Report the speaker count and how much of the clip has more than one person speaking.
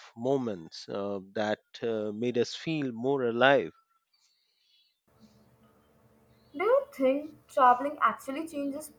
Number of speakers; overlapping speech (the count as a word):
two, no overlap